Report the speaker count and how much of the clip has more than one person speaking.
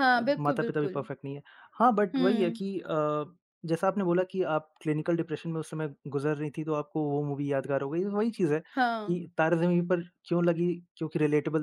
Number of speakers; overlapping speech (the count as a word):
two, about 12%